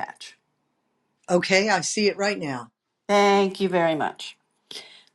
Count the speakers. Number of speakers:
2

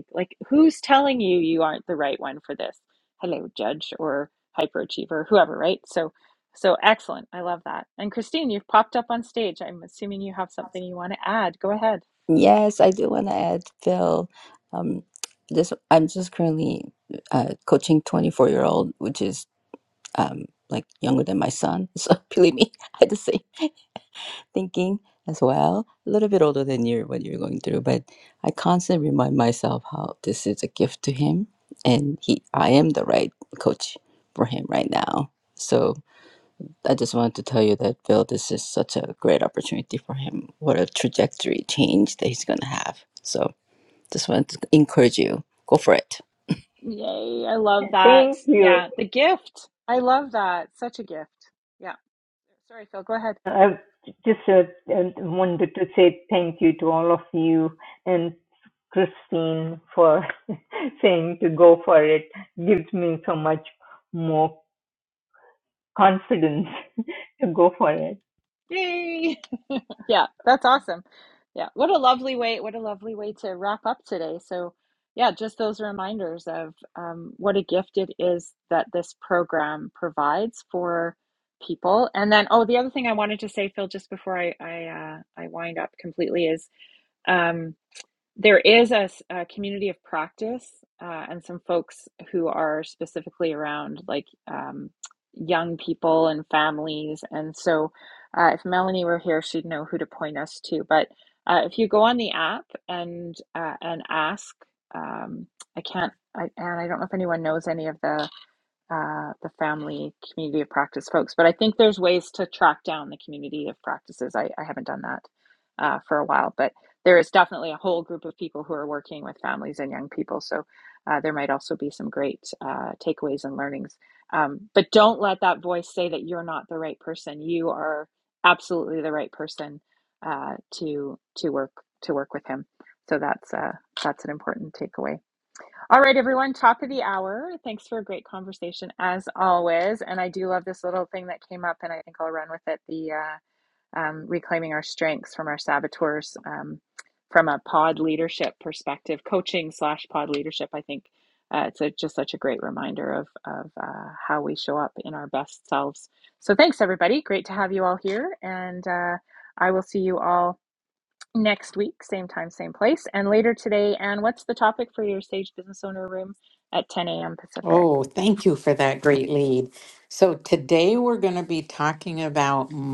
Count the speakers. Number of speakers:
4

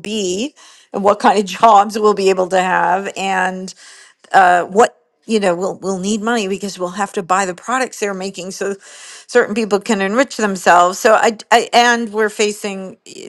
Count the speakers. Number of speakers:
1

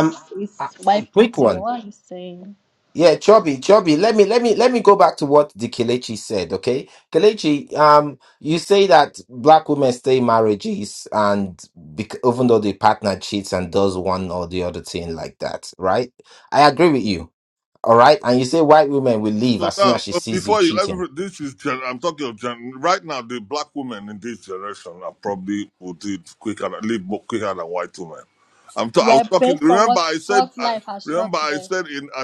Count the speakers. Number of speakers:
3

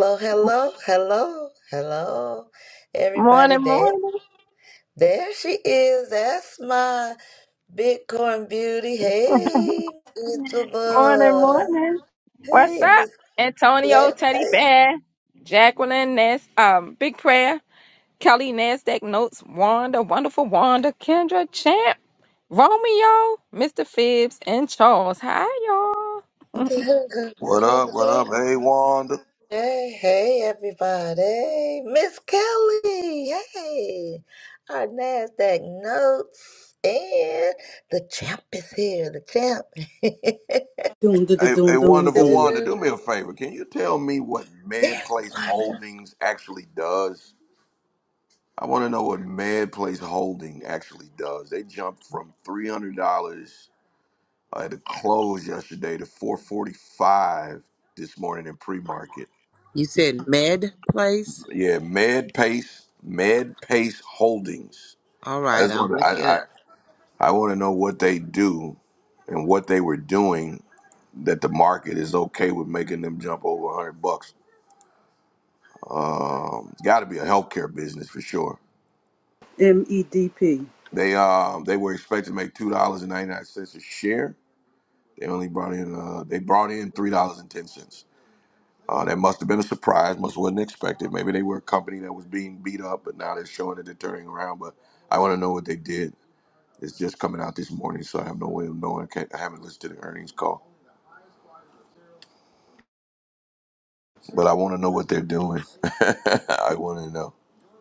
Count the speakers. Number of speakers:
5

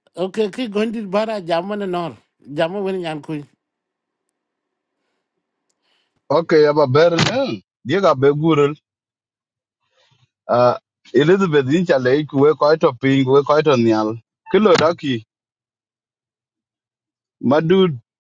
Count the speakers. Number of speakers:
2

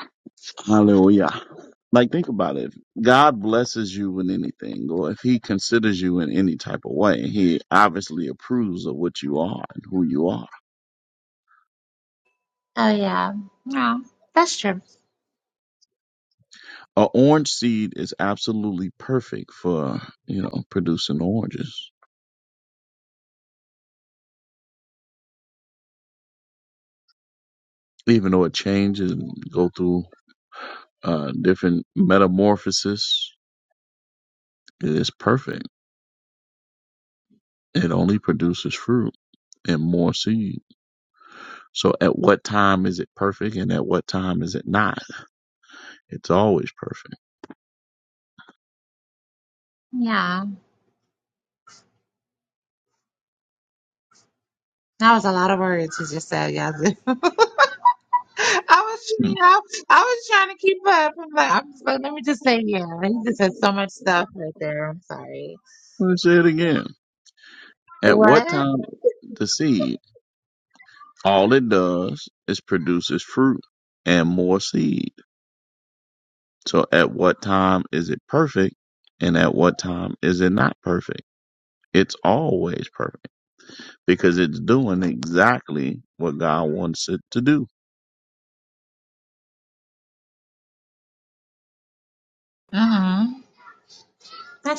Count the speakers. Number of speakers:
2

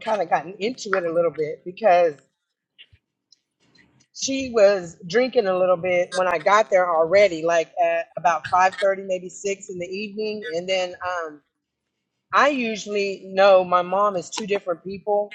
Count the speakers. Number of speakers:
1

